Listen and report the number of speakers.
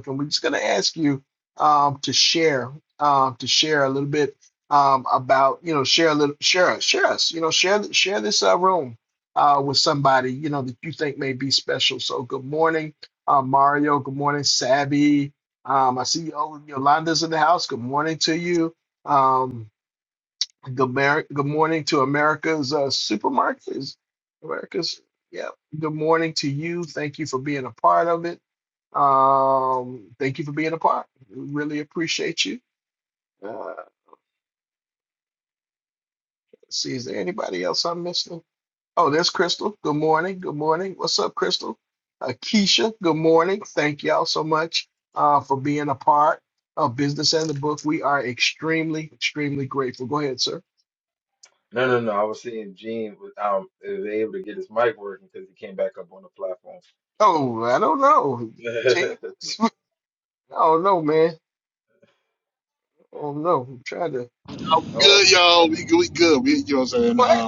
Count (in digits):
3